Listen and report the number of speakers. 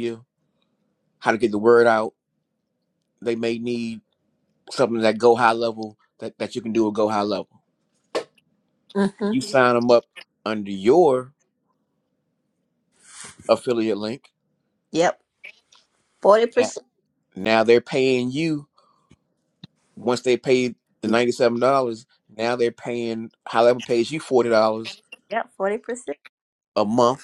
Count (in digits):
2